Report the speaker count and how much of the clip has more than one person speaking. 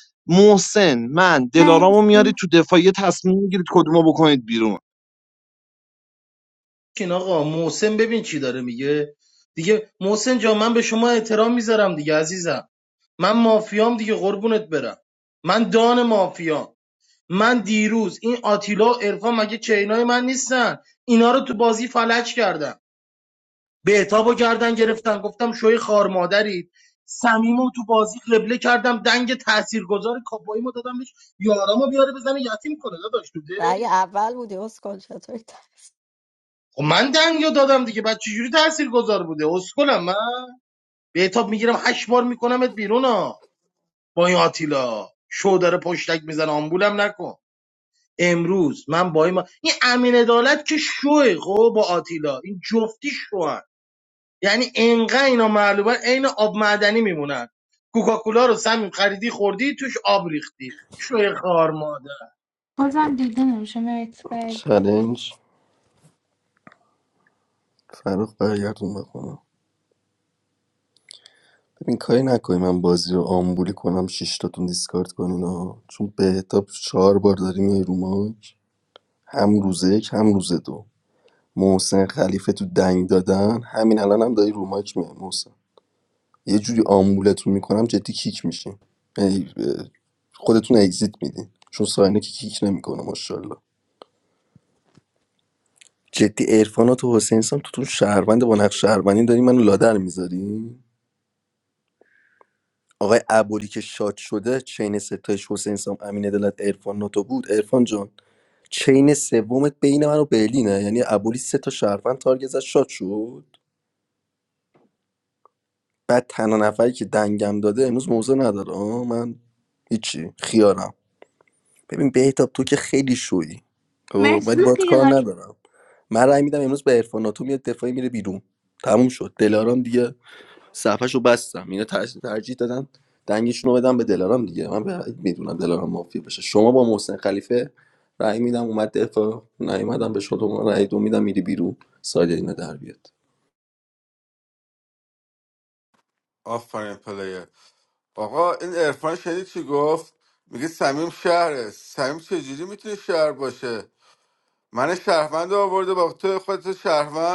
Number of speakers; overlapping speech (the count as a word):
six, about 1%